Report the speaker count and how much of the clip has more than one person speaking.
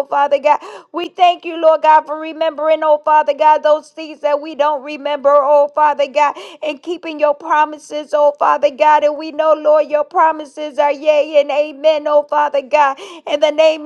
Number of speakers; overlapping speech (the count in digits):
1, no overlap